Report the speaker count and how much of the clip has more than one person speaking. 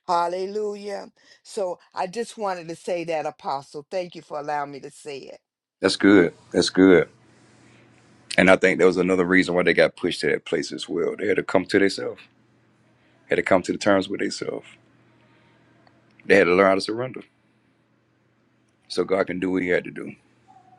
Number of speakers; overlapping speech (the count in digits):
2, no overlap